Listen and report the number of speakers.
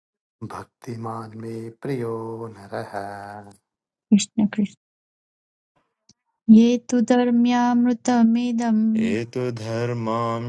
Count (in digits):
3